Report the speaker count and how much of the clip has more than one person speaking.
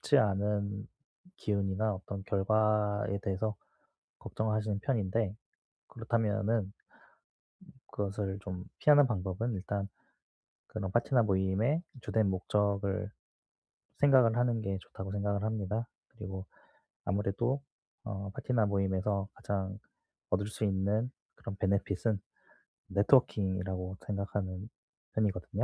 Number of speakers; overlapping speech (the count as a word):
one, no overlap